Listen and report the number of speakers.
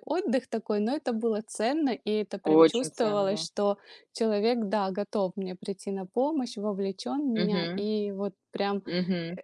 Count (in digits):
2